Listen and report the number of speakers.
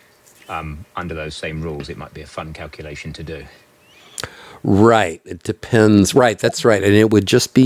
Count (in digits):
2